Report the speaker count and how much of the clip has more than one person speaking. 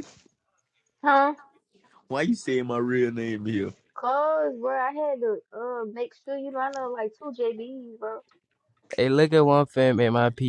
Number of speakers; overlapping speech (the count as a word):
three, no overlap